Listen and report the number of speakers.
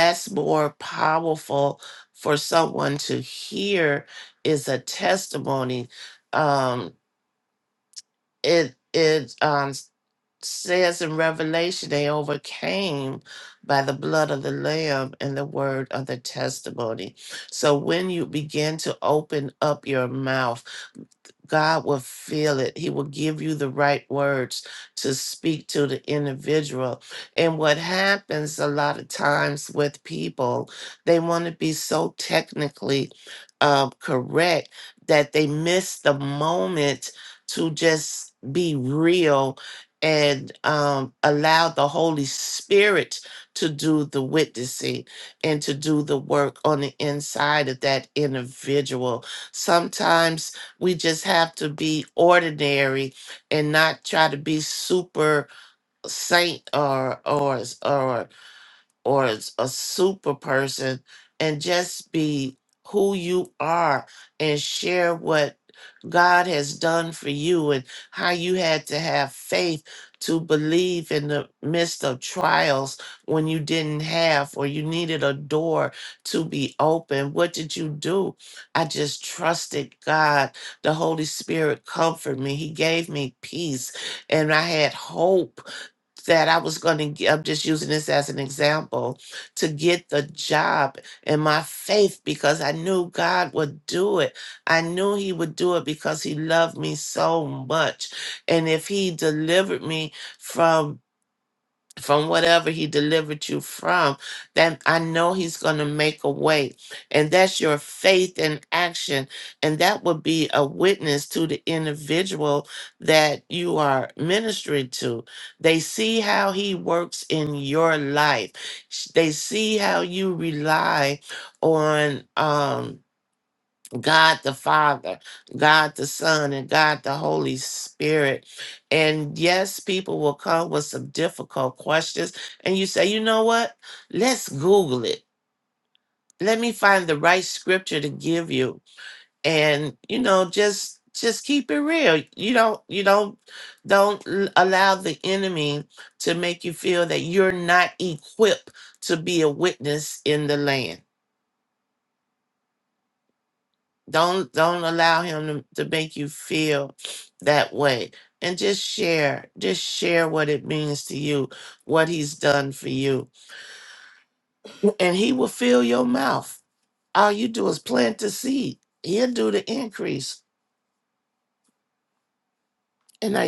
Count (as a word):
one